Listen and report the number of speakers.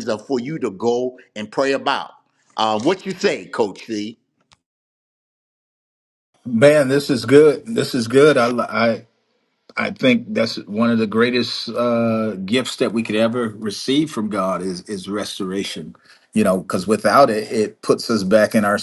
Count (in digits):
2